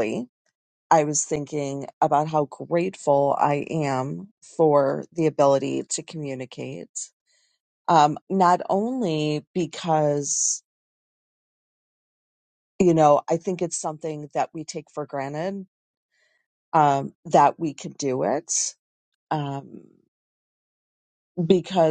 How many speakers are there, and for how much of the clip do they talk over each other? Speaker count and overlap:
1, no overlap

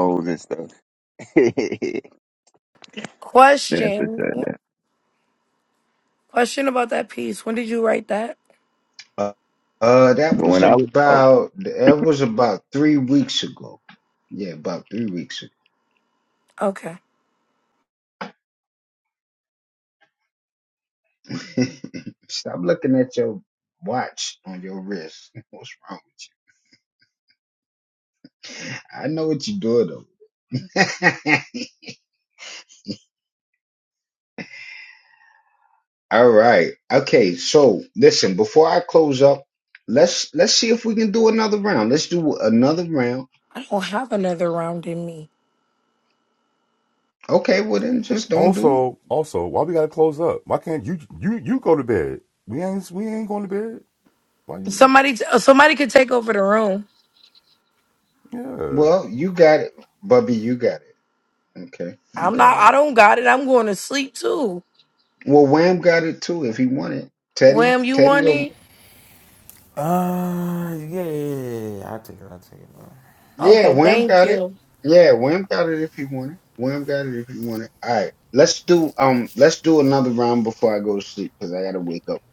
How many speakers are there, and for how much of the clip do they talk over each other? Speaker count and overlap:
5, about 5%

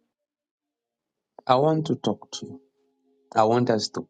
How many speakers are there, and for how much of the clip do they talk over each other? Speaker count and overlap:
1, no overlap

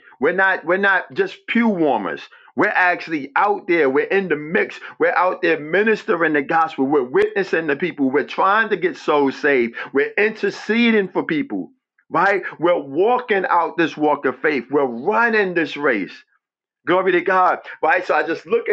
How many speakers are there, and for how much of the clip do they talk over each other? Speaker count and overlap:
1, no overlap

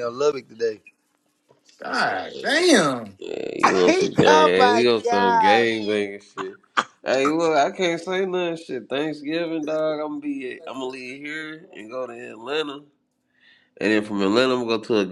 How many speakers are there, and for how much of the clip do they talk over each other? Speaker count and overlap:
3, about 12%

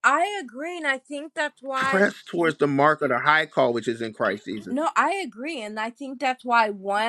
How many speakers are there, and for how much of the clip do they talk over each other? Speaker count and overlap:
2, about 5%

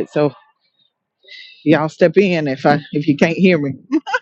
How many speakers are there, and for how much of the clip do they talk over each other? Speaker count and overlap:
1, no overlap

